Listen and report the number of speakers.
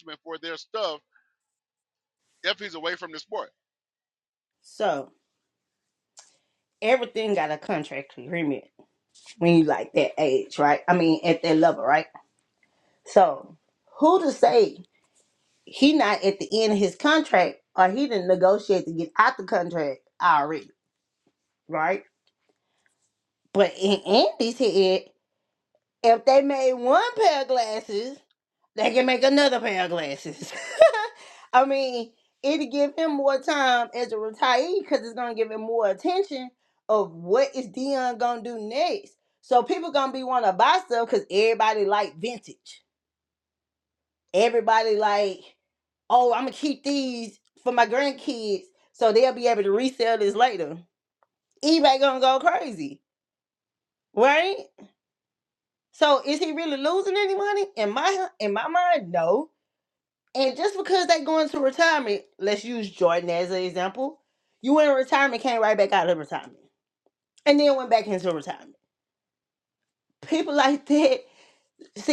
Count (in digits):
2